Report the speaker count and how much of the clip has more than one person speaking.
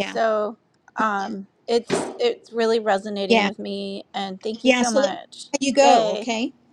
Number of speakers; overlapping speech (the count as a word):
two, about 21%